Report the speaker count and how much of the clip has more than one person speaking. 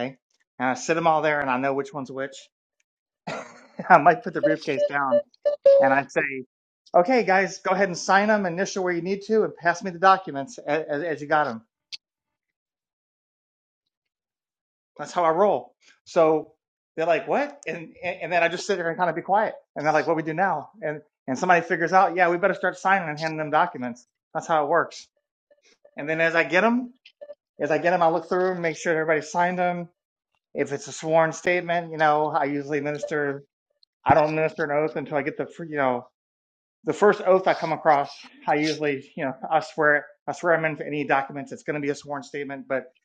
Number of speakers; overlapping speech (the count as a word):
one, no overlap